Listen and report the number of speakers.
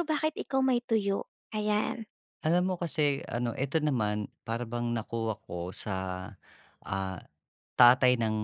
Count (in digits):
2